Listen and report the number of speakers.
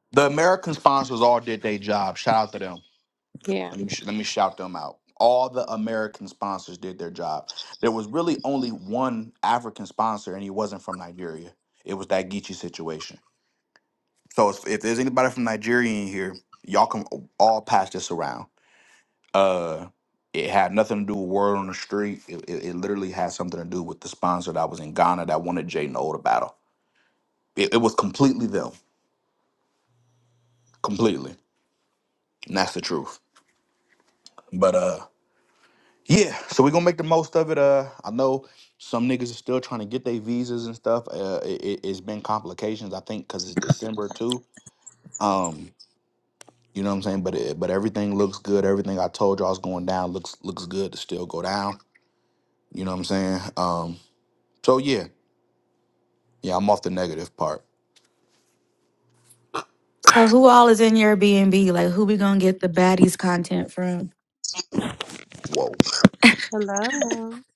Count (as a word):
three